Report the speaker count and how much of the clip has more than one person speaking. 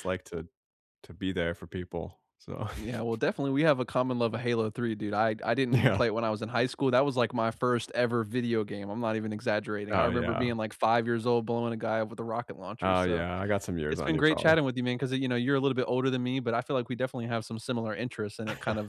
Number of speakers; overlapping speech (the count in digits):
2, about 11%